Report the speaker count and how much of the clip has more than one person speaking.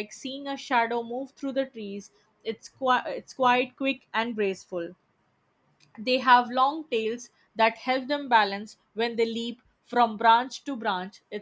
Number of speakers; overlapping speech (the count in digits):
1, no overlap